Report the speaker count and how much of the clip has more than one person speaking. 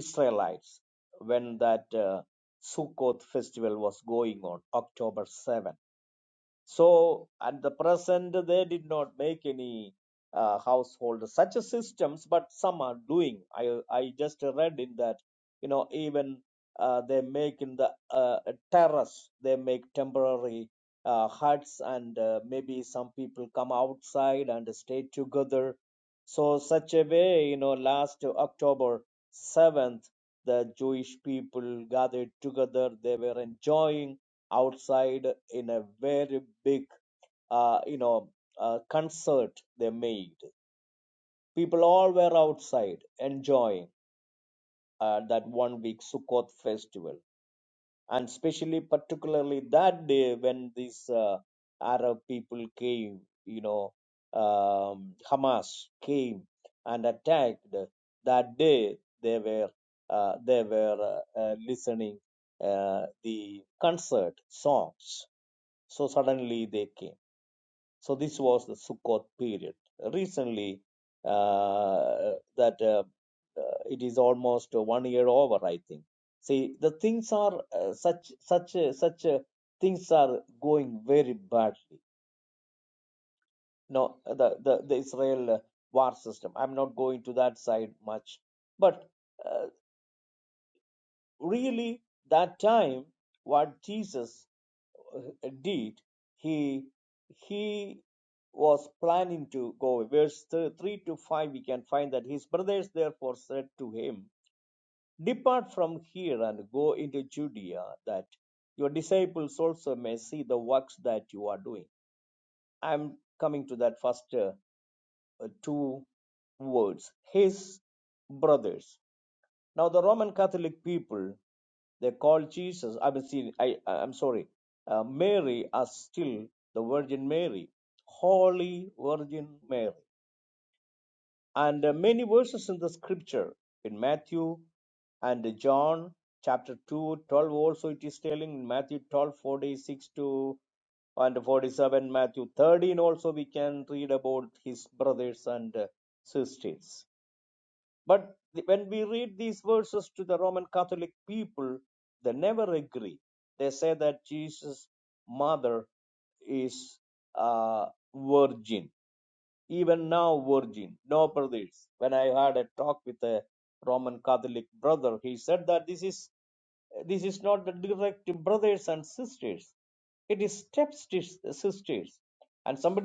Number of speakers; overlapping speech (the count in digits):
1, no overlap